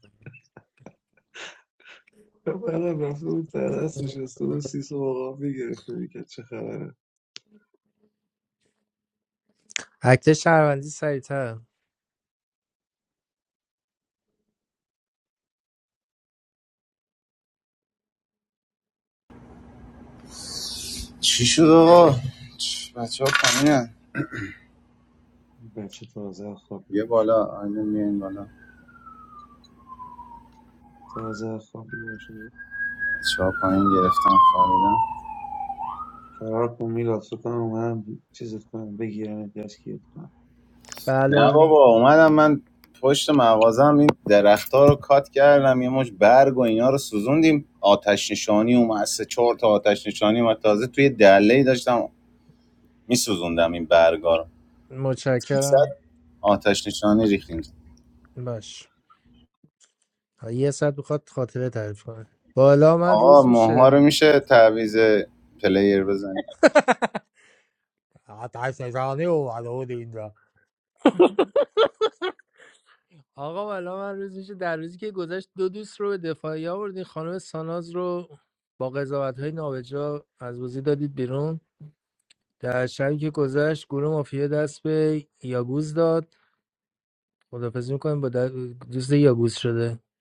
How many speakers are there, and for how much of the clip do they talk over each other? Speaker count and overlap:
3, about 2%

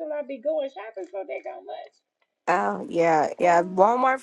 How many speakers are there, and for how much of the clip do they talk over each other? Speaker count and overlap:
2, no overlap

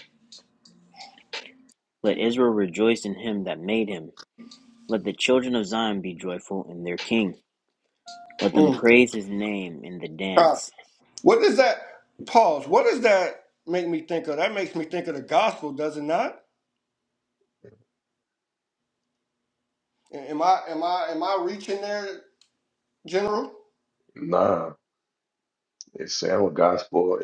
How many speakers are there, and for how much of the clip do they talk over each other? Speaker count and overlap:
3, about 1%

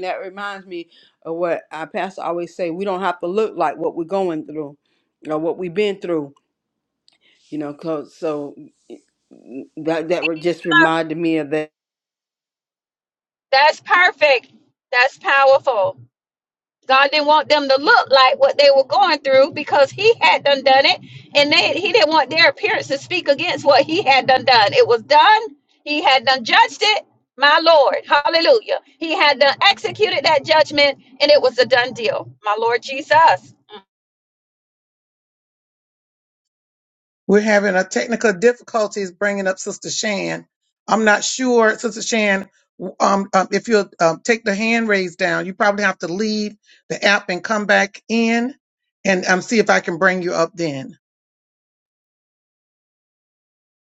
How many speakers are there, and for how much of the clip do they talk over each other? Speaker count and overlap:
3, no overlap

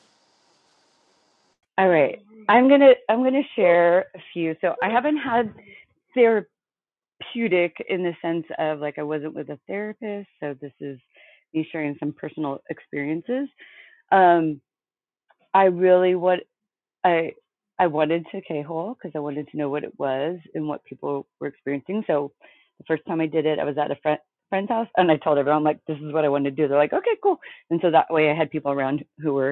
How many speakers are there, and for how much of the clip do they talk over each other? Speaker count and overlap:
1, no overlap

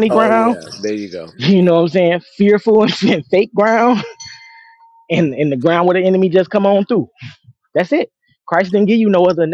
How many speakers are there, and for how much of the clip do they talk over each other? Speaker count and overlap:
2, about 6%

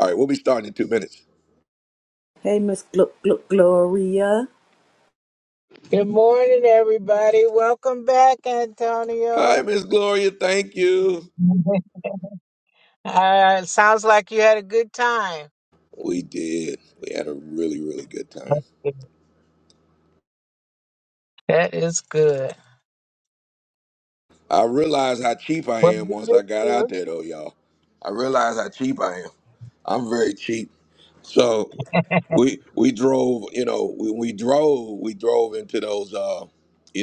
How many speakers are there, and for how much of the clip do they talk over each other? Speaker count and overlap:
3, about 3%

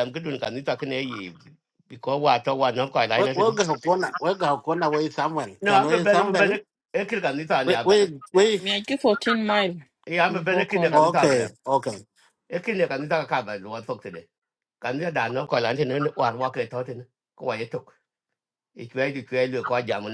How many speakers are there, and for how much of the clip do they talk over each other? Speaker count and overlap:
3, about 14%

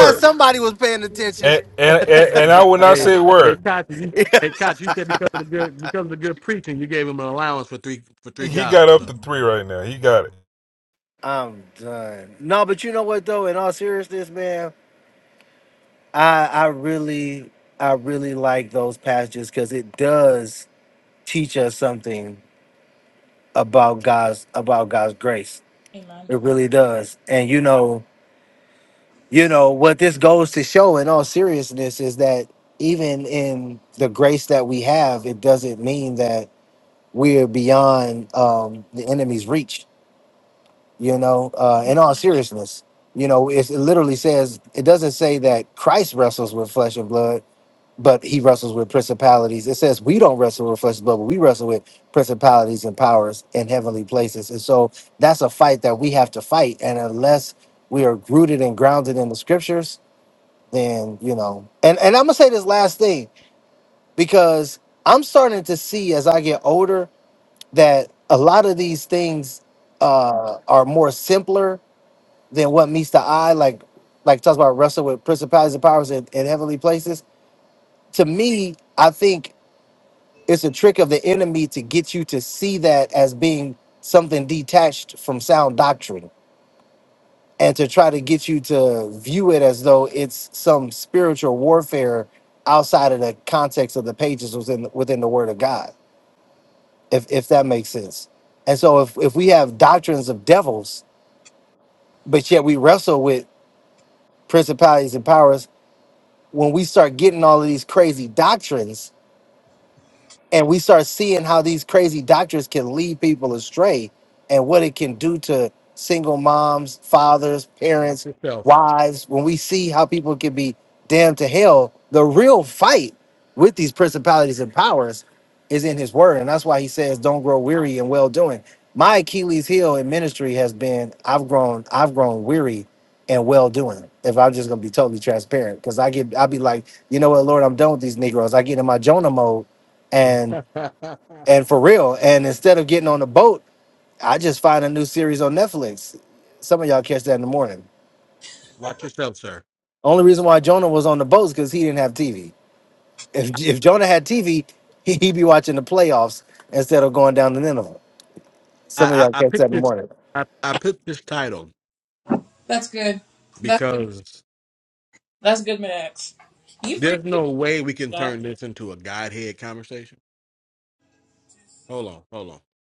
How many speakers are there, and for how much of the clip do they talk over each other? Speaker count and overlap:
4, about 2%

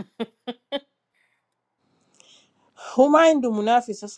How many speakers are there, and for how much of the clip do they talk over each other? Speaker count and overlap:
1, no overlap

